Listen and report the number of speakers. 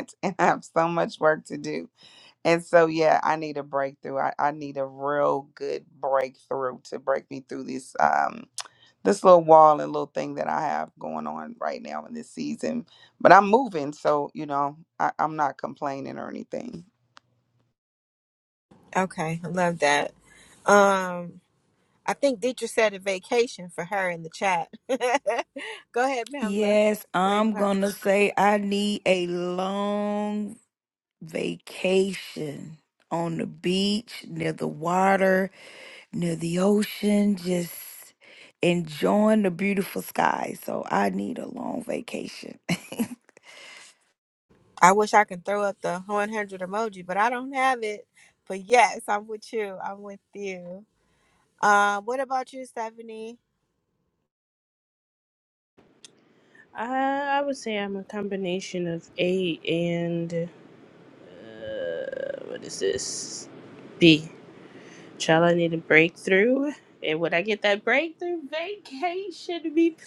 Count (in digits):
4